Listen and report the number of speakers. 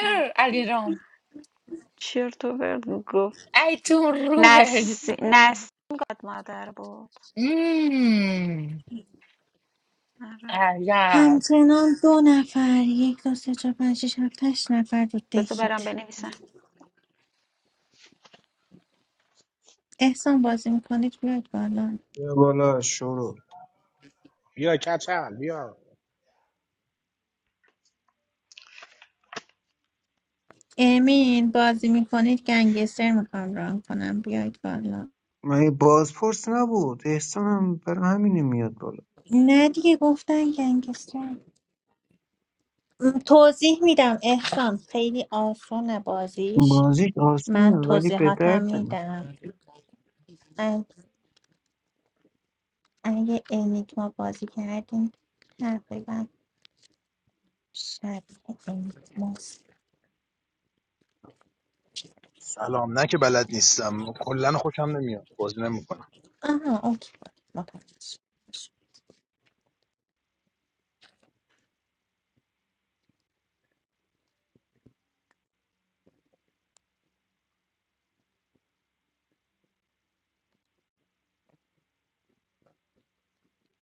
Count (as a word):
six